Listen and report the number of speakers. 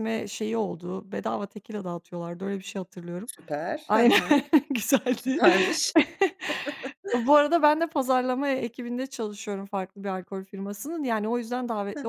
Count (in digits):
2